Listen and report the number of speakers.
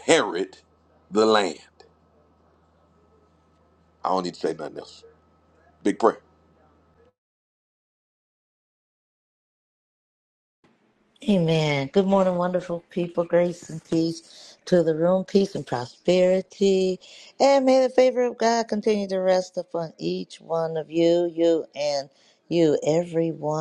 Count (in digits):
2